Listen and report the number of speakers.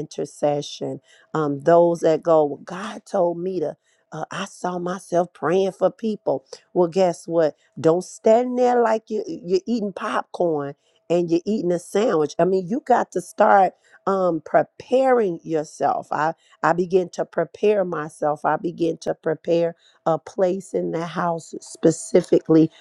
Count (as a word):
one